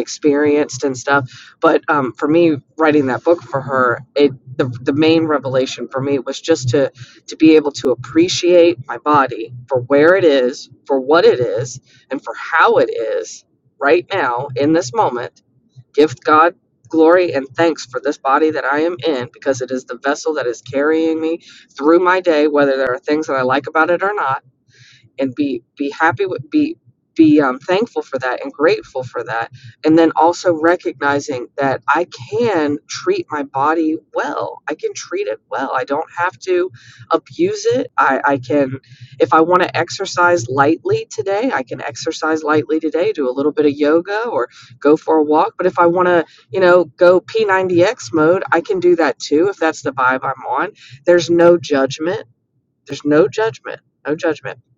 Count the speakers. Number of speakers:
1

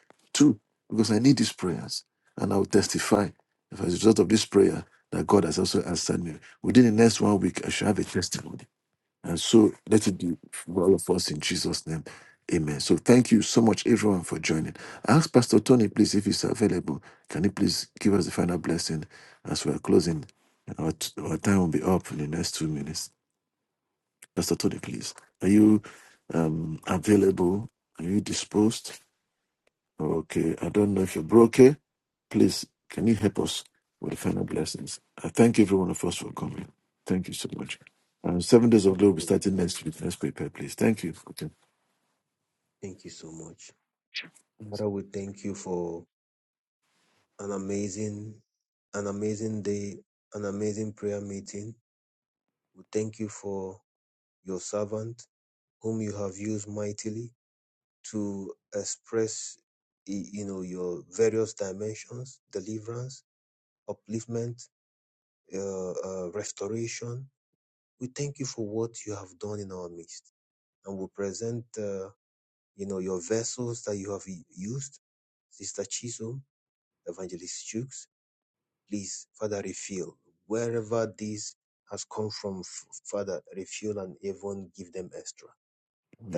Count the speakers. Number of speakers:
2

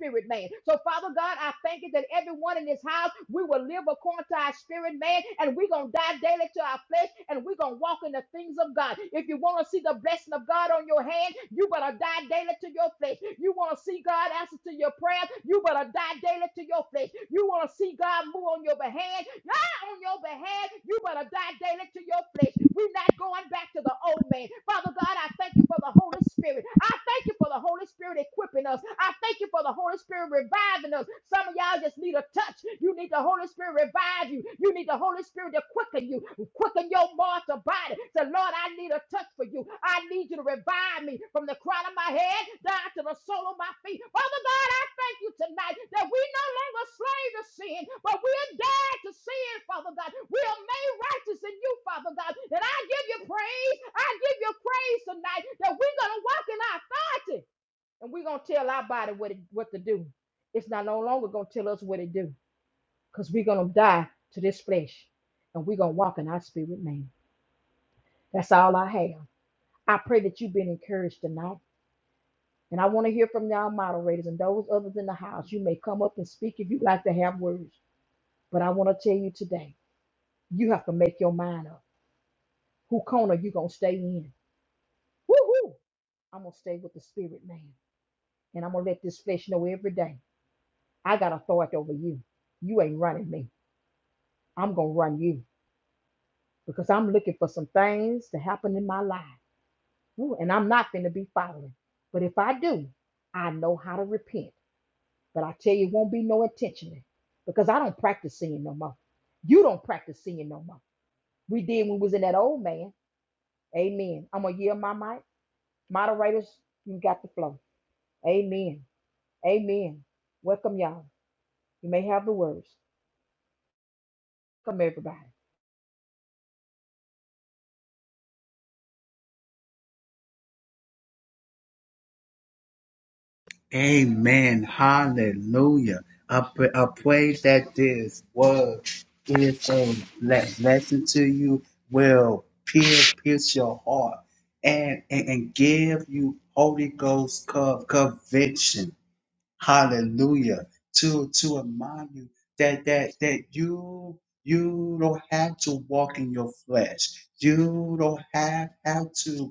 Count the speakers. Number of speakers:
2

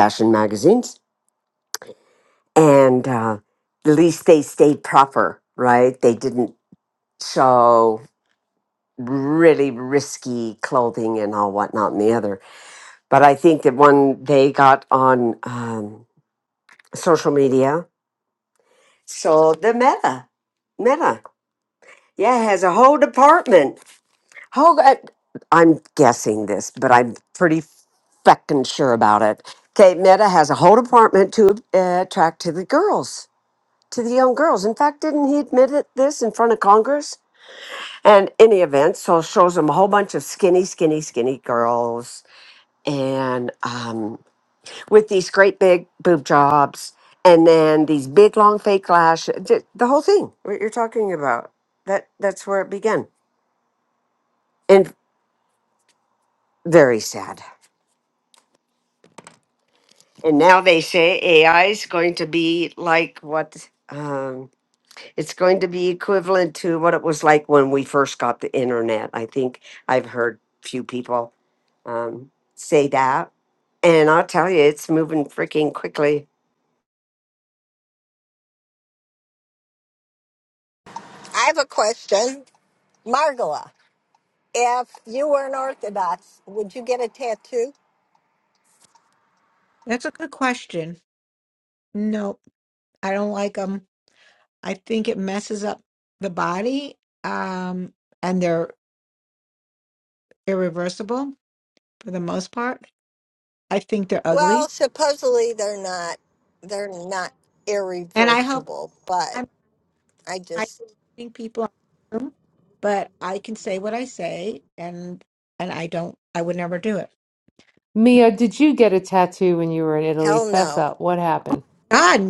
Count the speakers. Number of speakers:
4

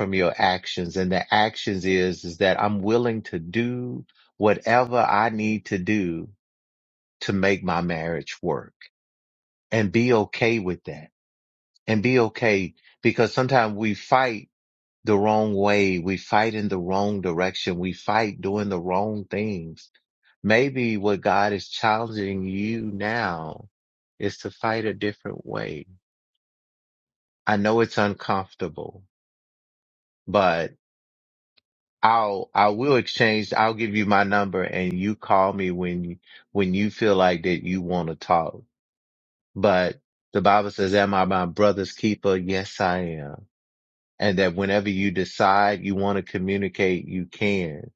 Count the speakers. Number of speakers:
1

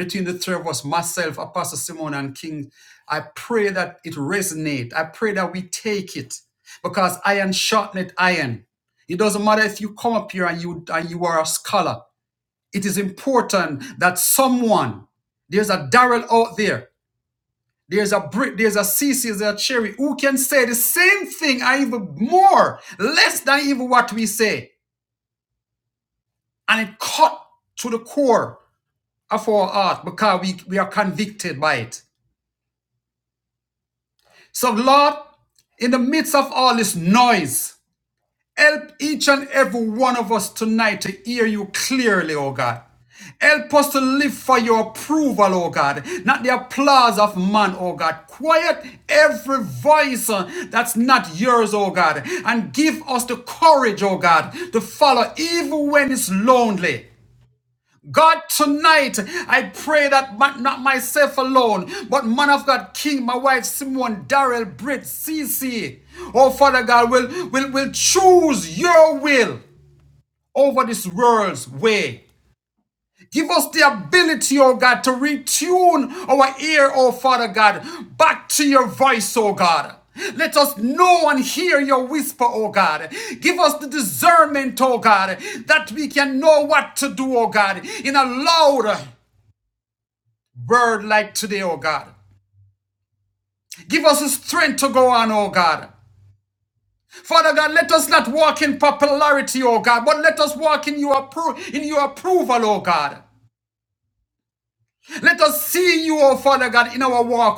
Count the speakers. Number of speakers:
1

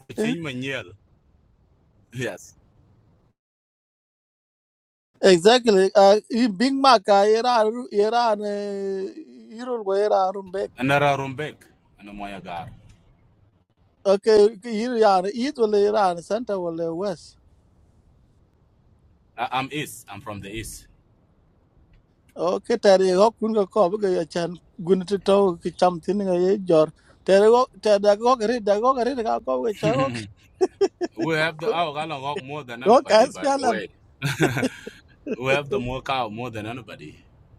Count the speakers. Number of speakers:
2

